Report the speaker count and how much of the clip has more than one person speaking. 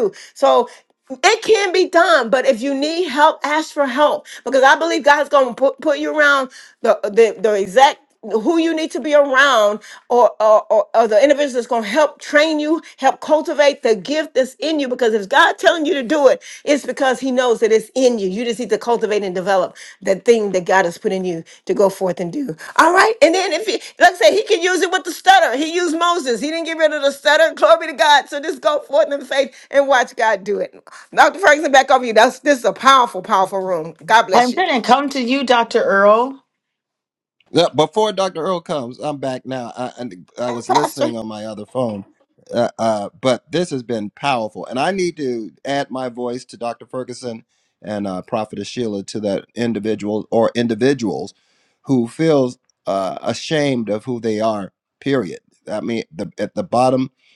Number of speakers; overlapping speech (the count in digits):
3, about 2%